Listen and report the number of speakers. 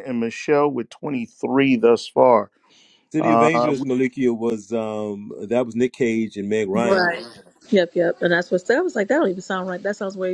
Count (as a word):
three